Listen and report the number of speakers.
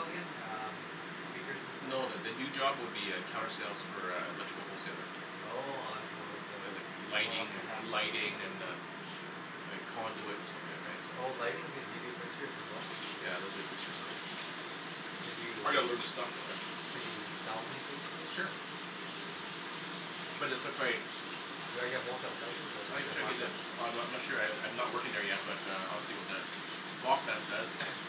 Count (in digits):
2